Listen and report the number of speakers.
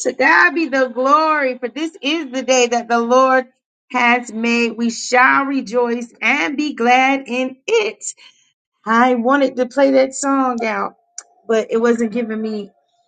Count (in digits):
1